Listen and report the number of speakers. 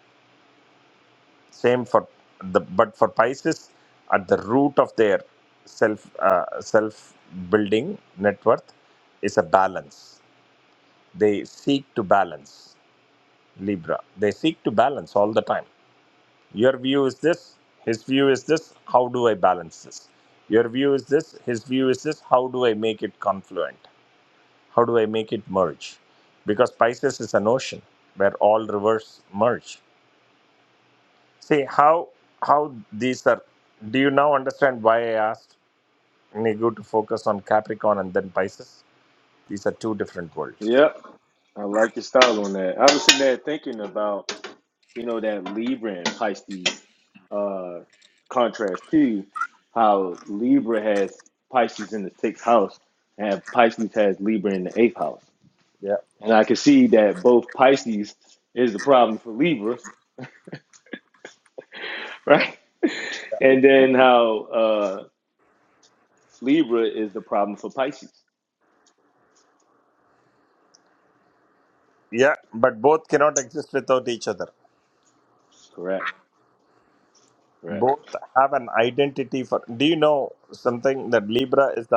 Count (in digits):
2